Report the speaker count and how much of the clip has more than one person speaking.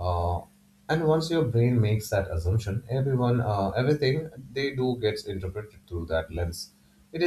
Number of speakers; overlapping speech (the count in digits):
1, no overlap